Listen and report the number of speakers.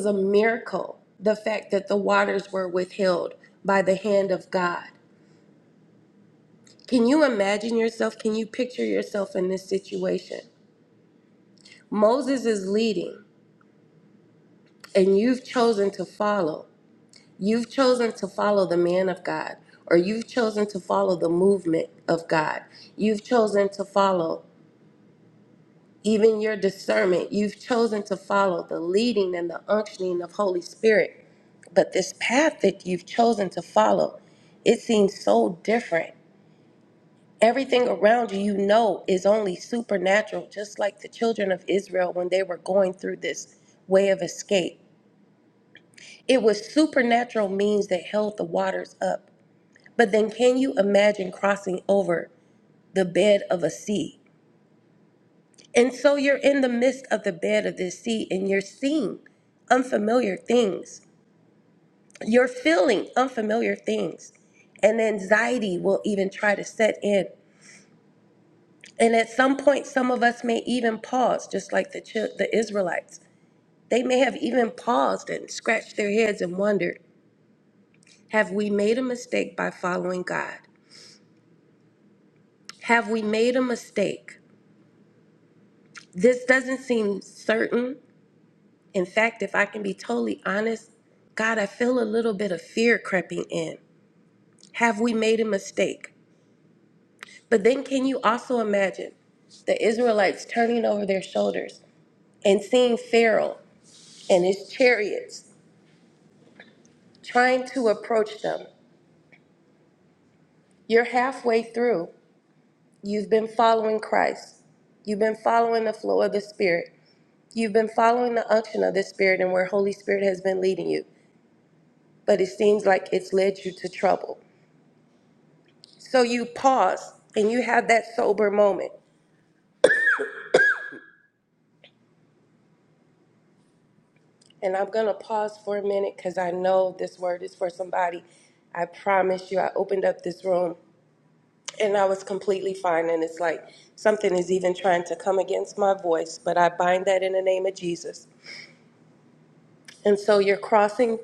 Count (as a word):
one